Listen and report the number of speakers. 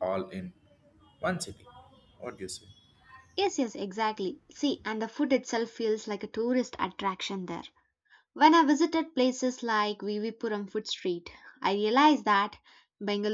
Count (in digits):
2